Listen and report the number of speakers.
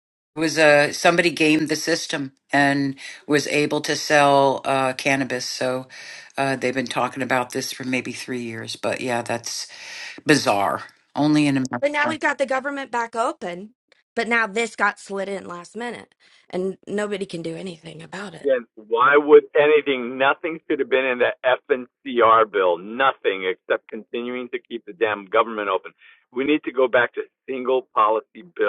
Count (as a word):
three